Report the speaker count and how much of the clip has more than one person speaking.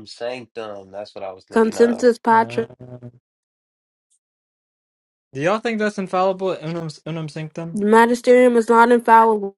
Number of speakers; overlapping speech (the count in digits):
3, about 9%